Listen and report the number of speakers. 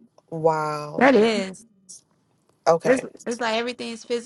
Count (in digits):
2